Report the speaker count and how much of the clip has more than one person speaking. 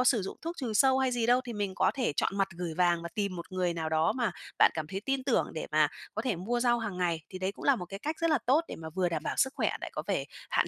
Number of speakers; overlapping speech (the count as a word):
one, no overlap